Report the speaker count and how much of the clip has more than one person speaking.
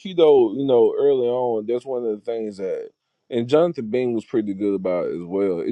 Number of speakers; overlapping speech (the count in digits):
1, no overlap